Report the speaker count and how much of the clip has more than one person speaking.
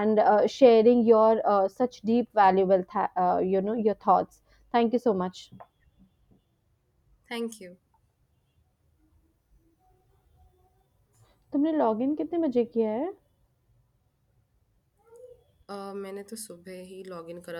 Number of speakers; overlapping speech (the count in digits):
2, no overlap